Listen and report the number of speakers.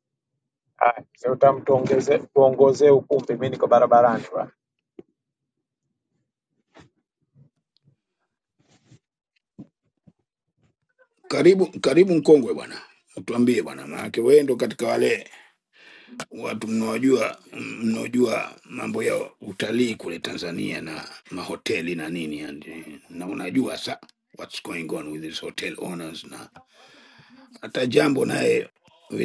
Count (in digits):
2